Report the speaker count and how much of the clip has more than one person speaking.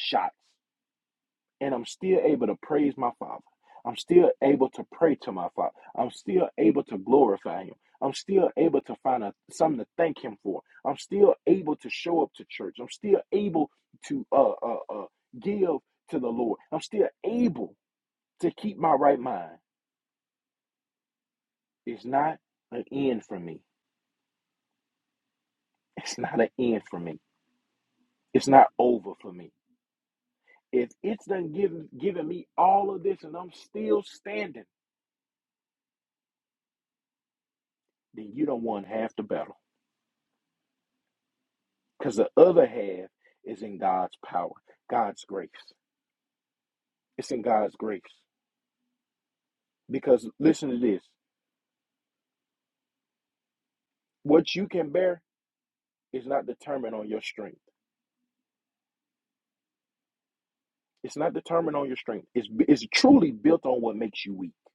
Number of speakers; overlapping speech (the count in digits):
1, no overlap